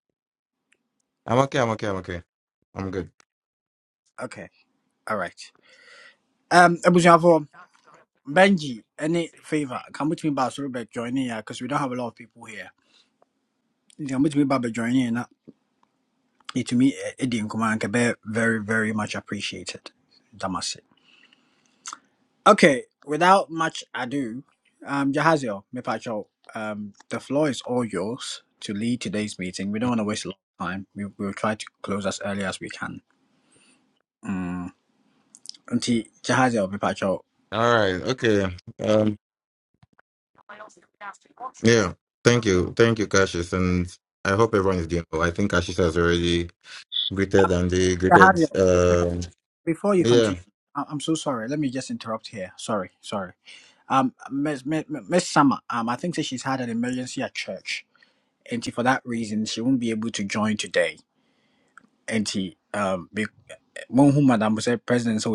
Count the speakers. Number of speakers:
2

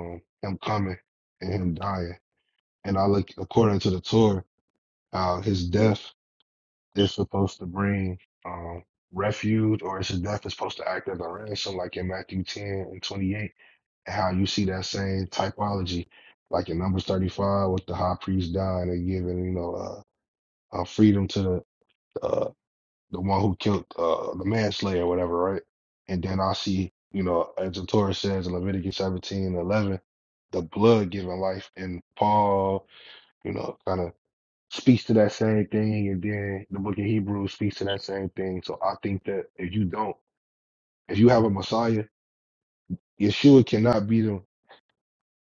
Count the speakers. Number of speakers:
1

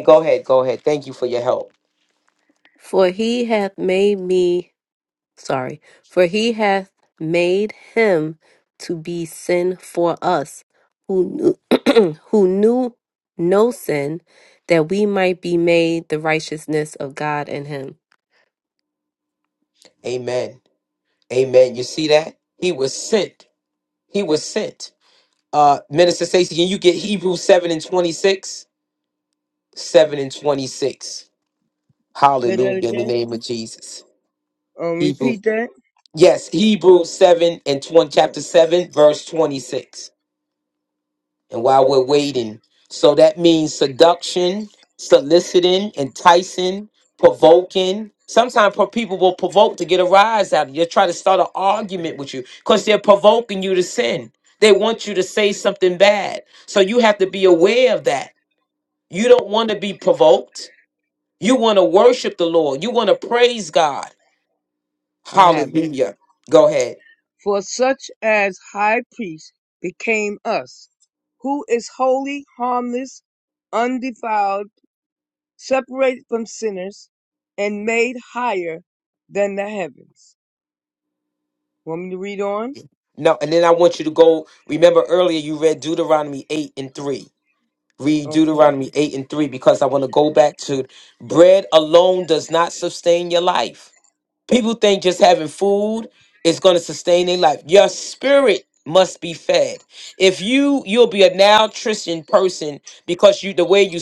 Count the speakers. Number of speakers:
3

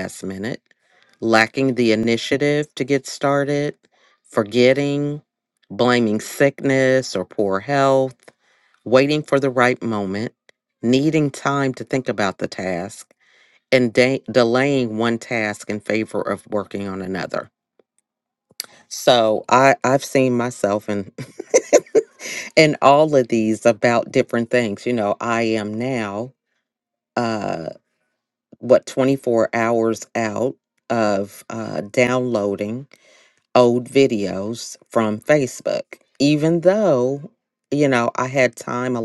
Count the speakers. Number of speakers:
1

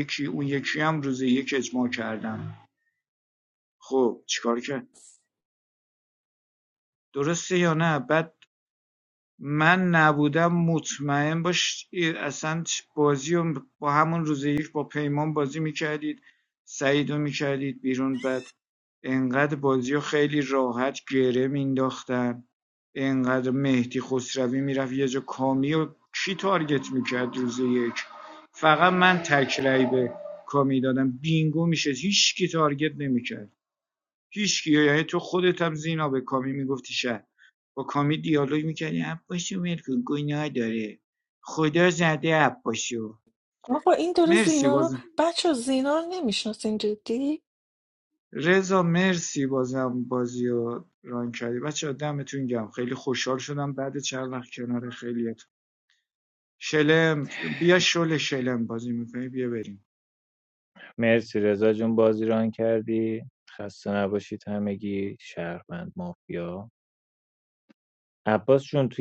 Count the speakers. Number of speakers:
3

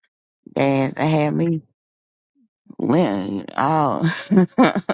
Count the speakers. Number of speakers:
1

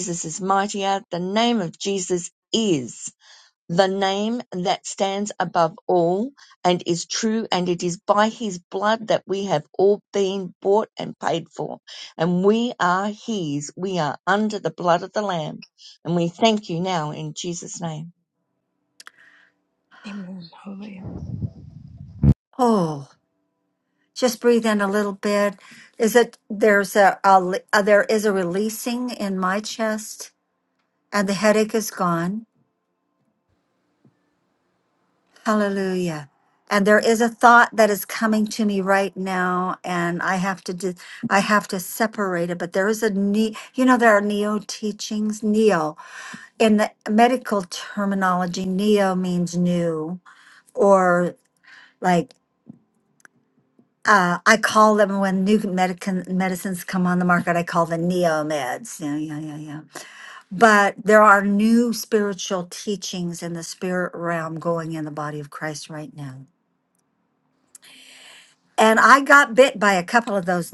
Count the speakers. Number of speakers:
3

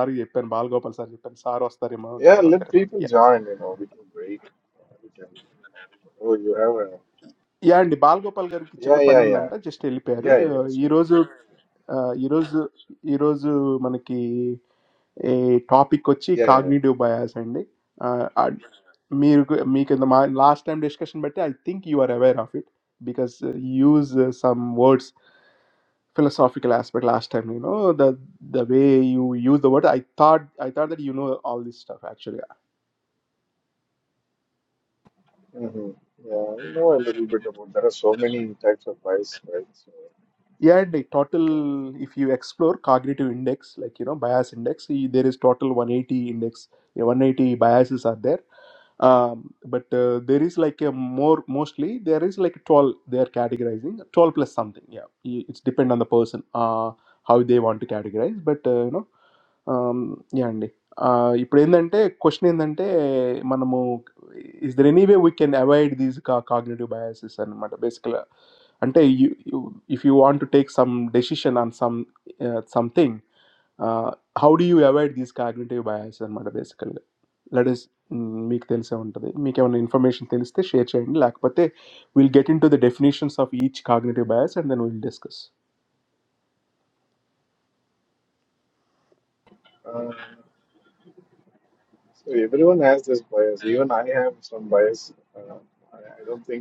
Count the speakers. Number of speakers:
2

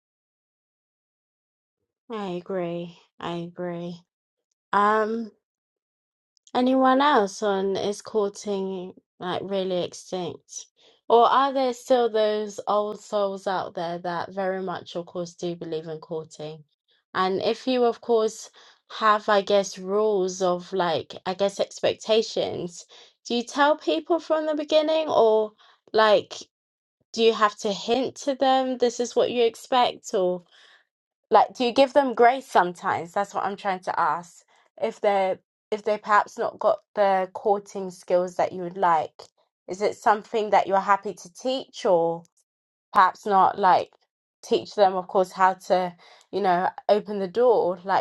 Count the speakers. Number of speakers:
1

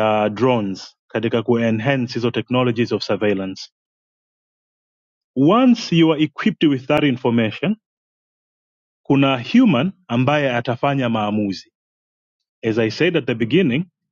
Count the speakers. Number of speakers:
1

